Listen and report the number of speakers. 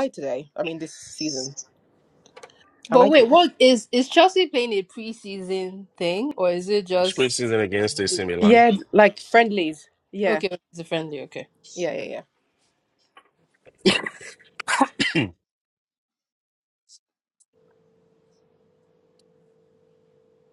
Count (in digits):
3